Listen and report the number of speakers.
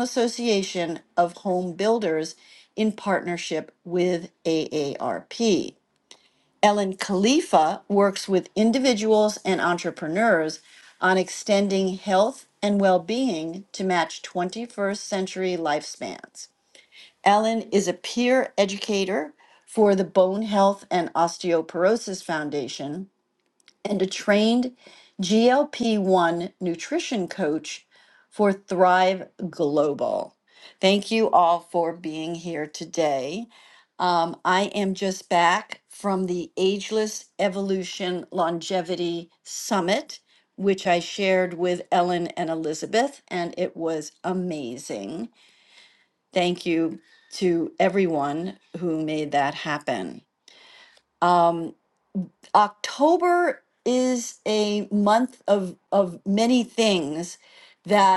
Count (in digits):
1